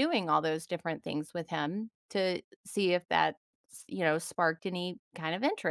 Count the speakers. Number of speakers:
1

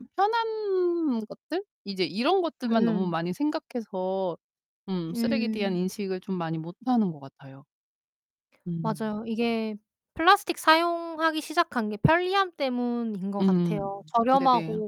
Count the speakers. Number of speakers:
2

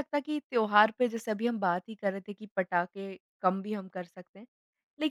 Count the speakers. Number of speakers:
1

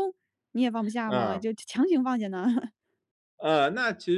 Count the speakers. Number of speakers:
2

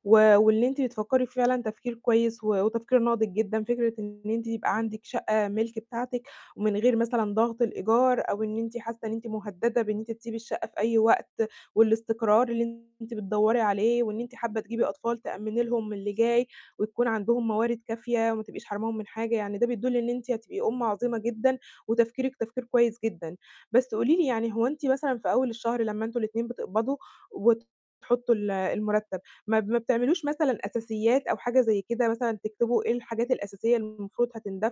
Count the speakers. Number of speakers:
1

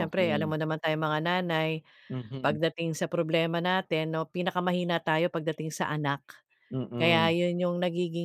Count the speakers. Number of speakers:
2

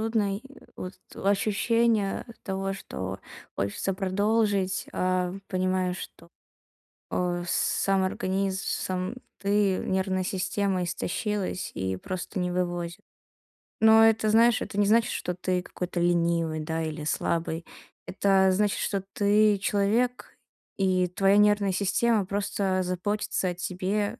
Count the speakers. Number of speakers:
1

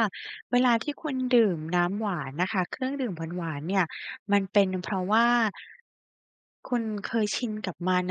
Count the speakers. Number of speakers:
1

